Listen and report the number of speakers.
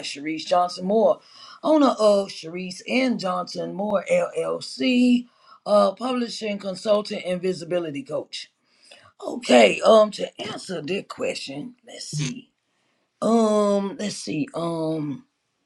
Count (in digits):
1